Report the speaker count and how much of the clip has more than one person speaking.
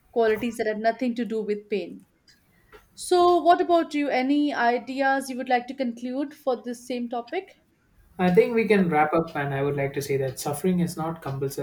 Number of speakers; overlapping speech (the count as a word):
two, no overlap